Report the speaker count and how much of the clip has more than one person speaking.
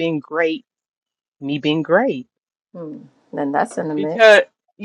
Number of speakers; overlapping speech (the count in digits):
2, about 7%